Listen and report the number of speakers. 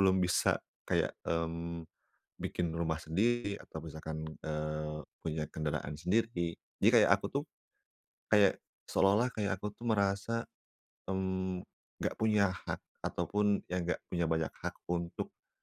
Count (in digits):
1